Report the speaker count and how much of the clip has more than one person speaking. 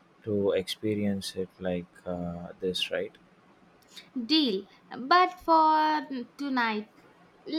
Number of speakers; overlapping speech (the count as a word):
two, no overlap